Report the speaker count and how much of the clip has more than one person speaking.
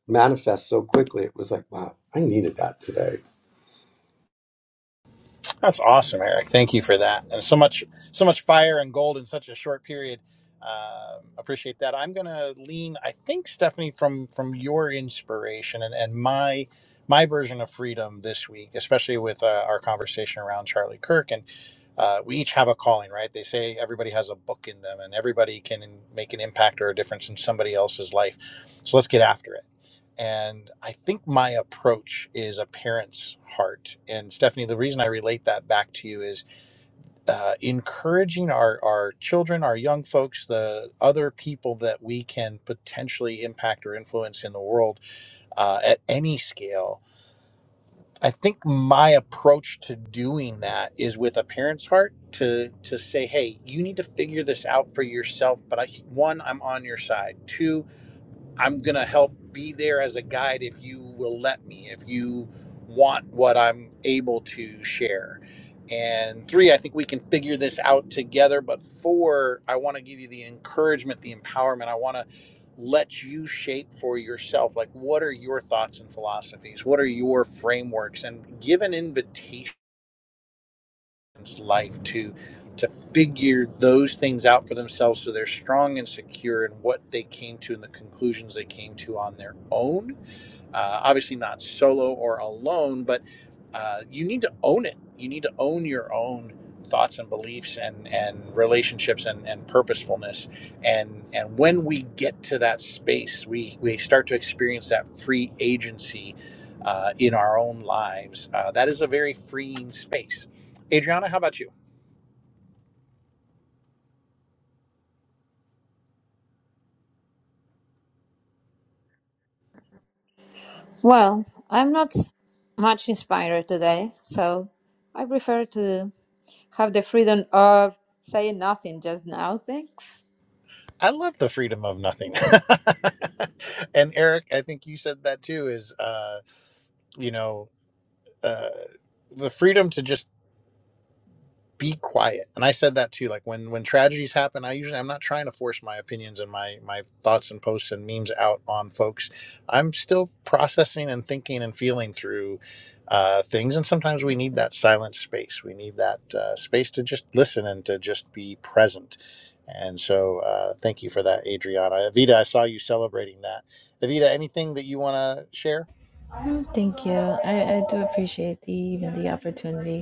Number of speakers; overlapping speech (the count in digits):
4, no overlap